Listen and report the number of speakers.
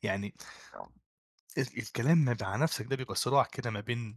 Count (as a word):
one